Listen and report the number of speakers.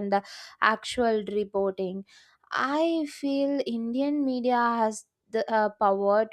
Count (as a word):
one